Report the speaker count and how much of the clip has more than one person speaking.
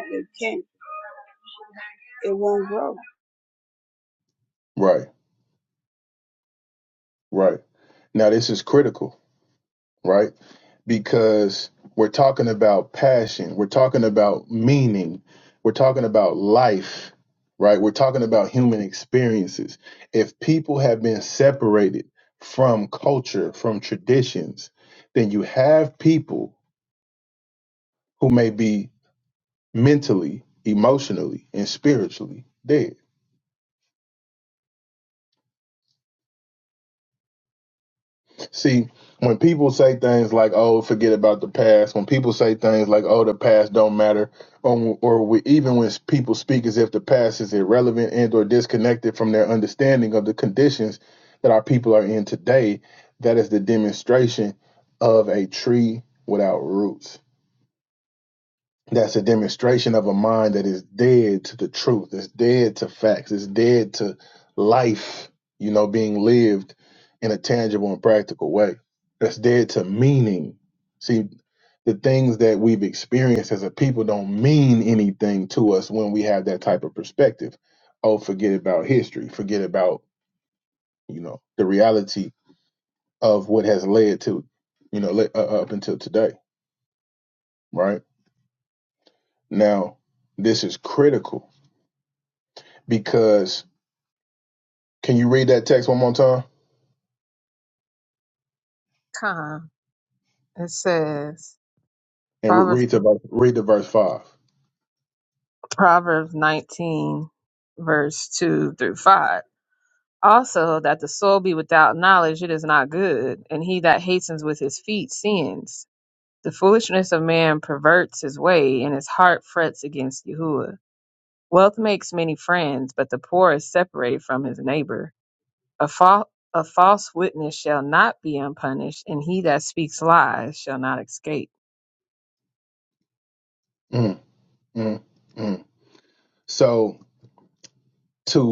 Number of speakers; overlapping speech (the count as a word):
three, under 1%